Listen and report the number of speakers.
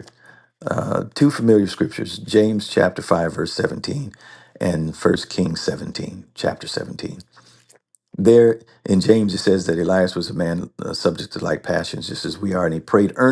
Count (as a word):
one